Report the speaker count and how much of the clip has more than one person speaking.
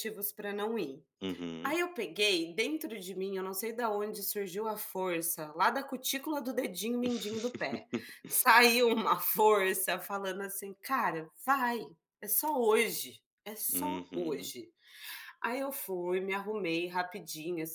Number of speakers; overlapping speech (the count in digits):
2, about 5%